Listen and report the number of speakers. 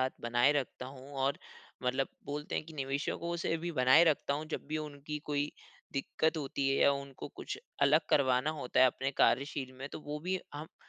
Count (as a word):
one